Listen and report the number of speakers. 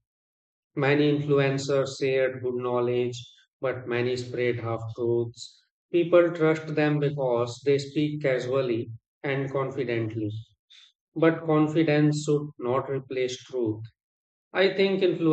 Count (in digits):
1